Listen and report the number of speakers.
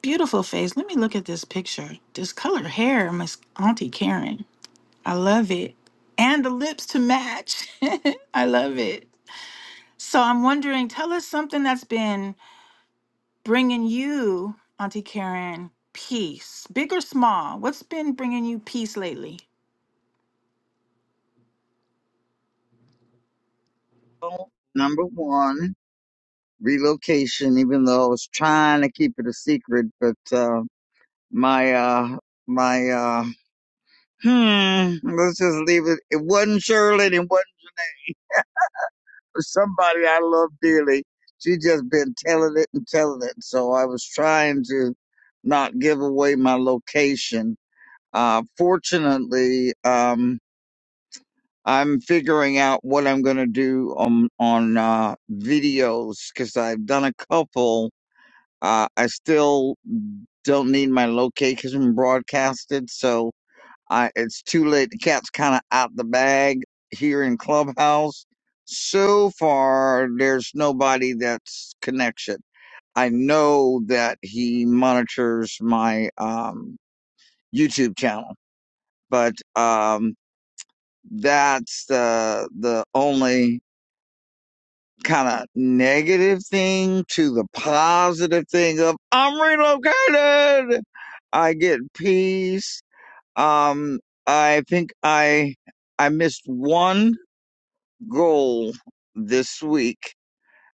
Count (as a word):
two